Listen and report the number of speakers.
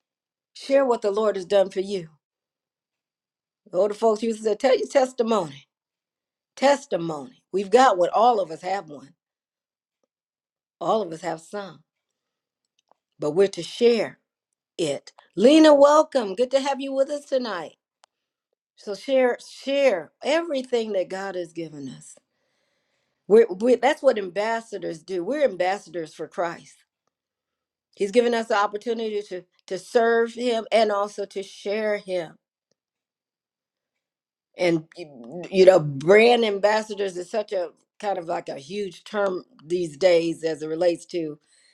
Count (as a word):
one